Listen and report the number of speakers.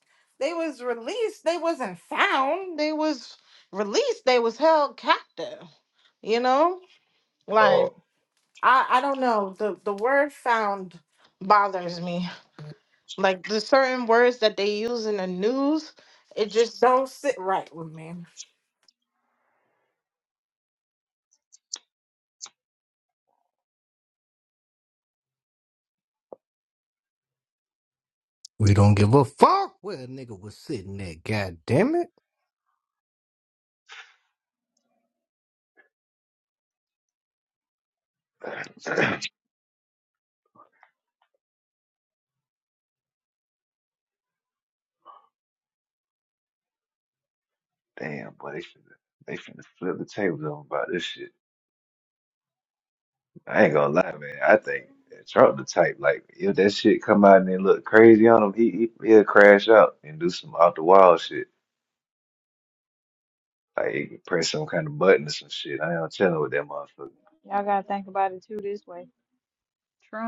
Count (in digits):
4